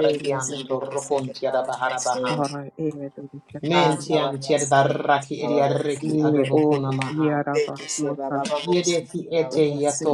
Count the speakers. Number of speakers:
3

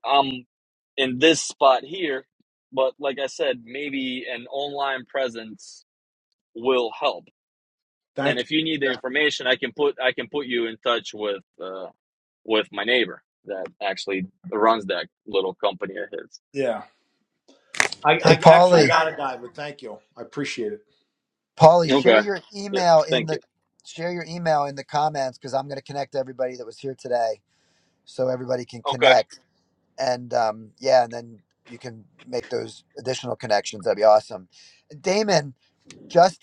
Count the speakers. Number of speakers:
3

